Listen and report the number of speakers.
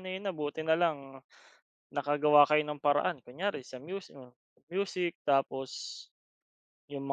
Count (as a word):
one